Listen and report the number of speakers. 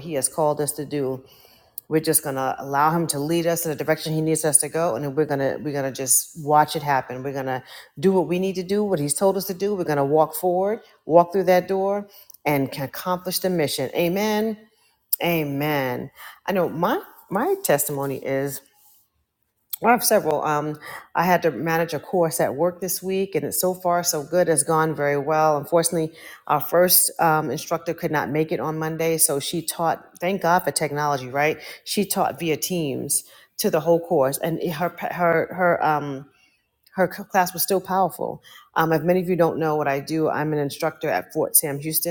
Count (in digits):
1